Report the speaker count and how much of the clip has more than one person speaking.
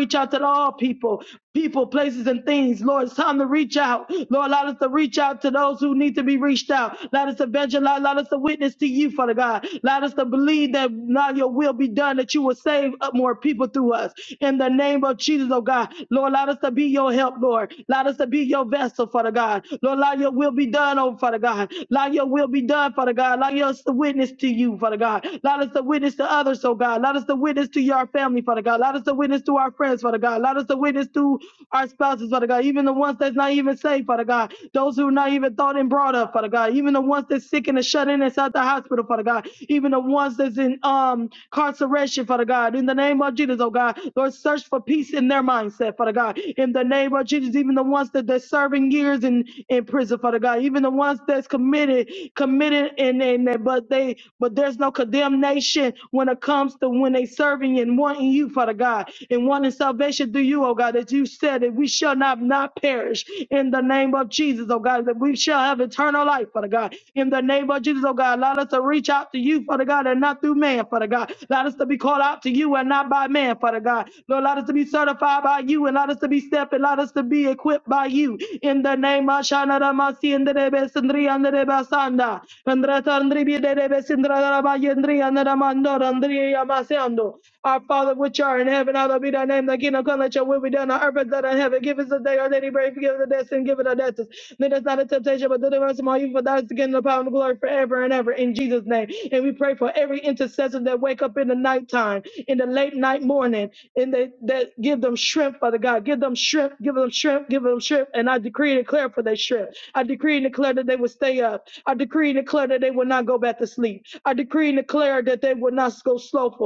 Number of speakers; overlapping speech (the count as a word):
one, no overlap